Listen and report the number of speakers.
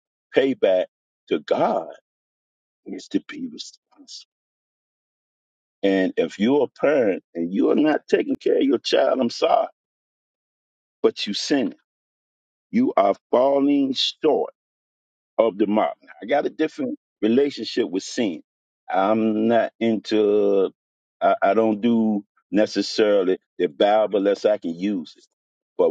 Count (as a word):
one